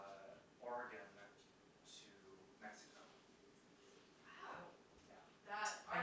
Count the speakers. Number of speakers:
two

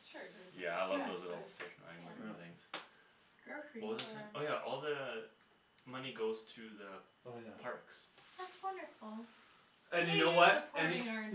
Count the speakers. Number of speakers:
four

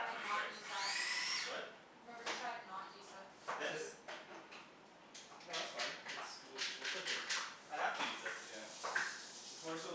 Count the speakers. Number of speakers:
three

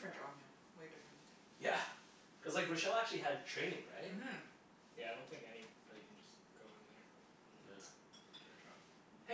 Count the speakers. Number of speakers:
three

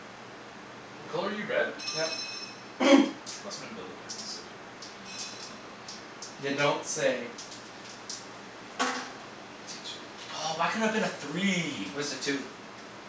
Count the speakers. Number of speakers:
three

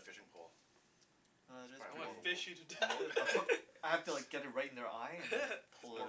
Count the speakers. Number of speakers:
three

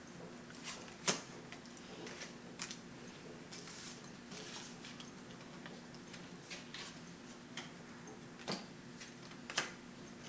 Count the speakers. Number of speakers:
zero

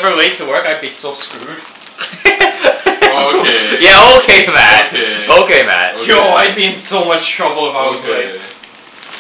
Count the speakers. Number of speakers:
three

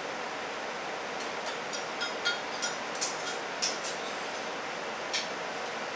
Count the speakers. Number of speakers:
zero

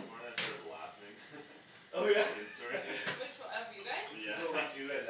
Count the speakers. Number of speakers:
three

